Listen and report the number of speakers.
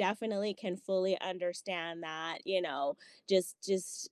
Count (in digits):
1